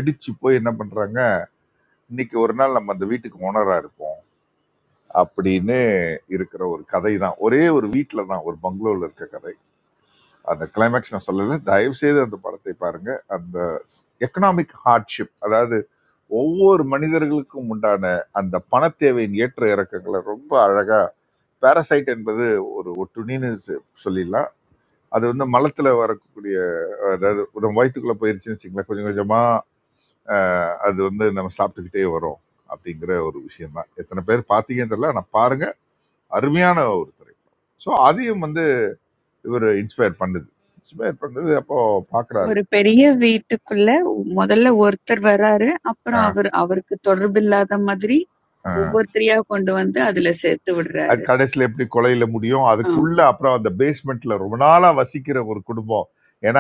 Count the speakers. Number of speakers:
2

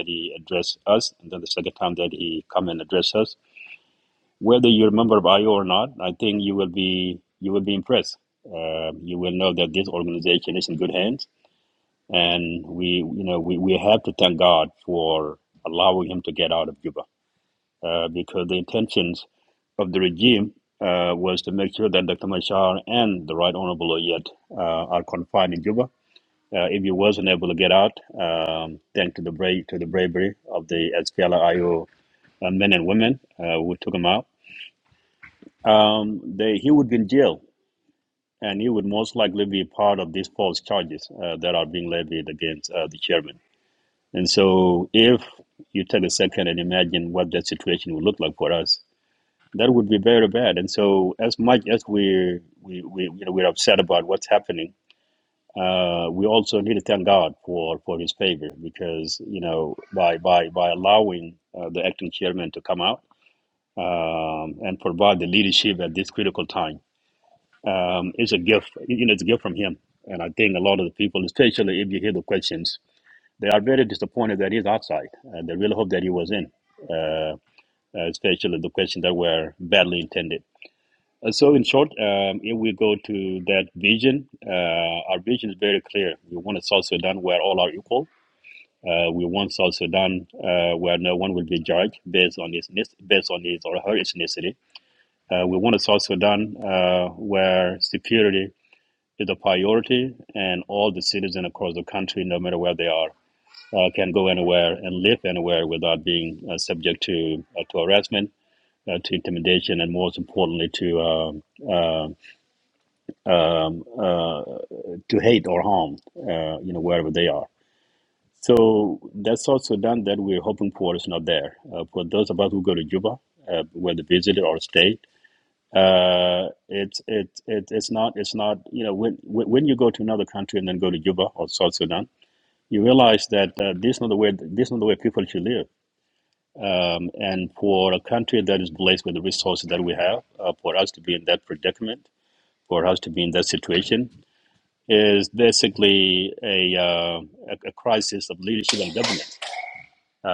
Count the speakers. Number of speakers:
1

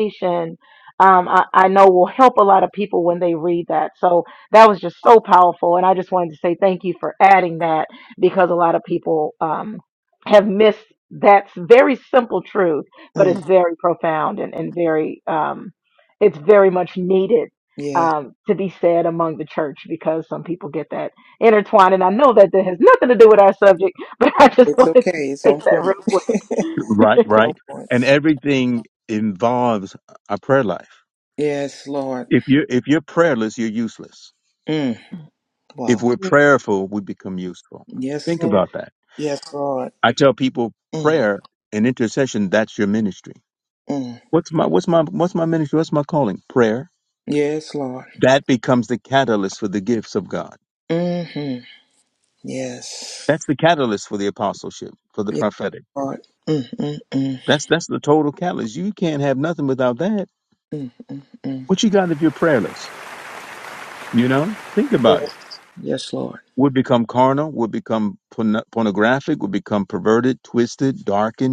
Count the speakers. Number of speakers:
3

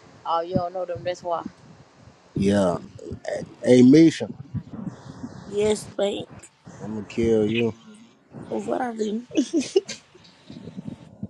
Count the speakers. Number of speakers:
3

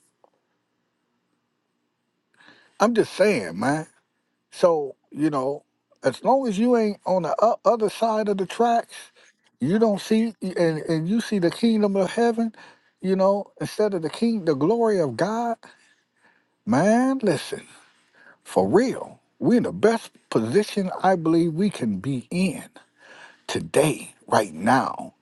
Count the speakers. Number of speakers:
1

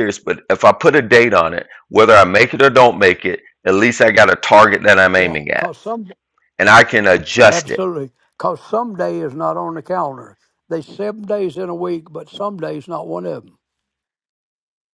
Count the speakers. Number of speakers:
2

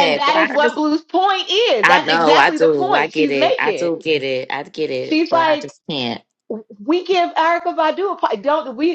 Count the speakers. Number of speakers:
2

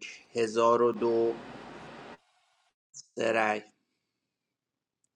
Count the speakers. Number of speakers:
1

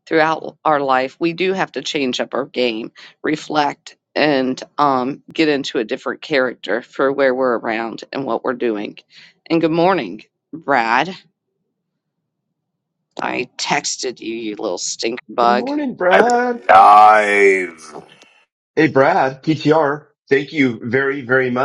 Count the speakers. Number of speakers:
3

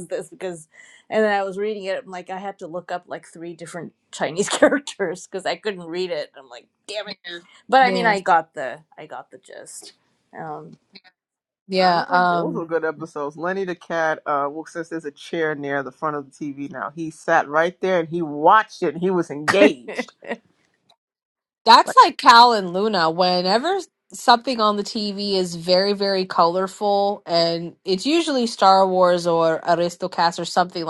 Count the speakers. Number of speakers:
3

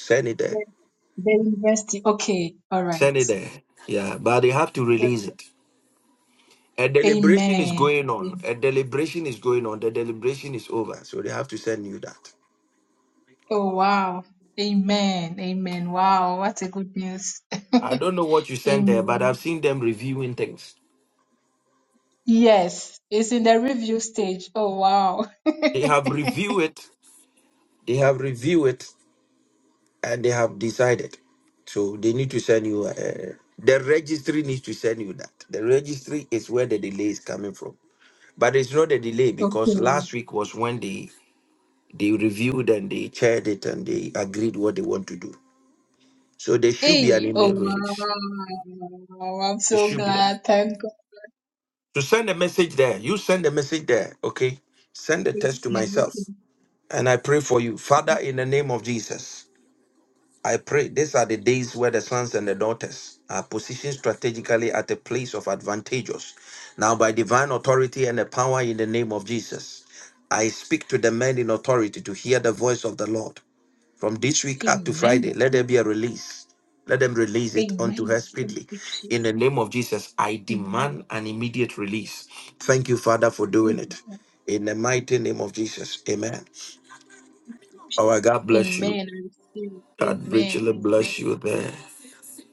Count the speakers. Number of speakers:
2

